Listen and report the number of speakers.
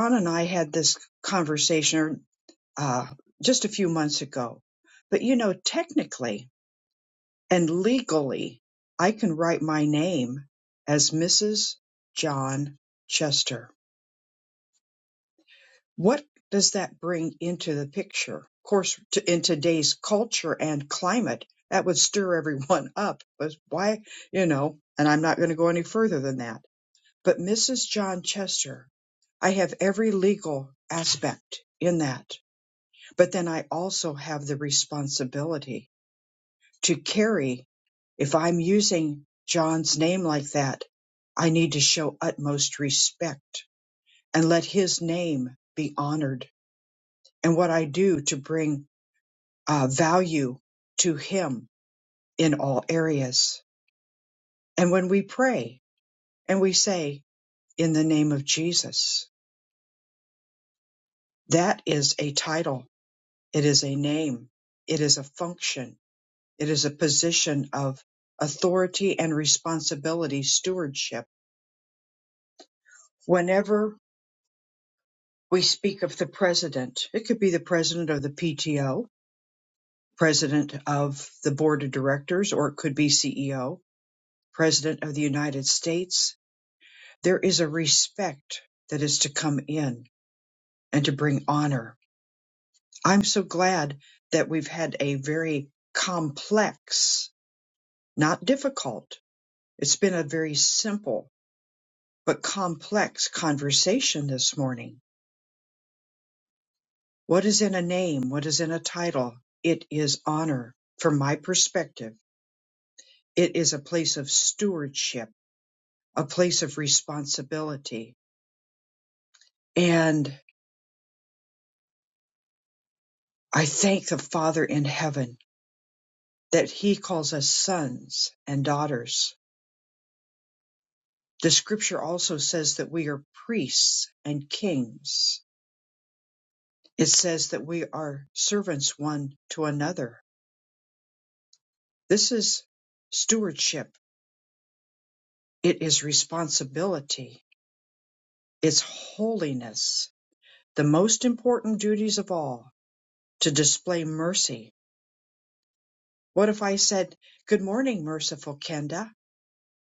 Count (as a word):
one